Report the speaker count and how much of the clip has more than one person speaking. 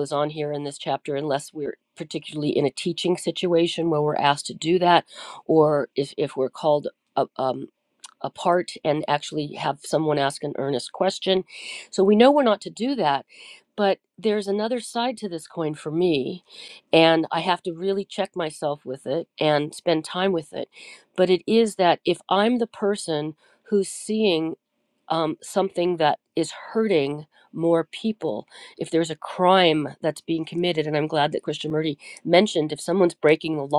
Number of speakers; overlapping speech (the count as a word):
one, no overlap